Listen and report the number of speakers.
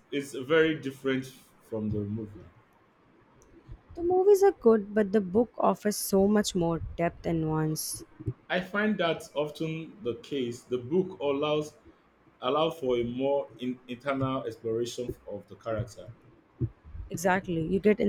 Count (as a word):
two